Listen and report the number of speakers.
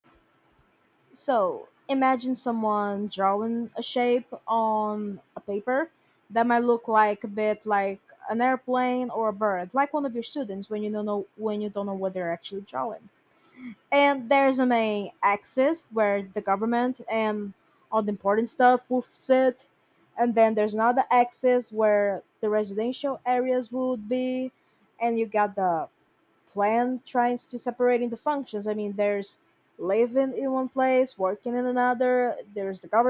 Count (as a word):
one